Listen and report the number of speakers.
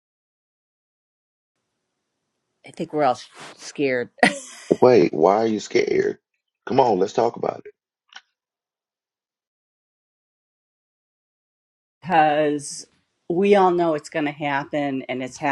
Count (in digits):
2